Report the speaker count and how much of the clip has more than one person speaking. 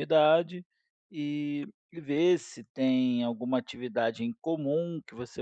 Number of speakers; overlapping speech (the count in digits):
1, no overlap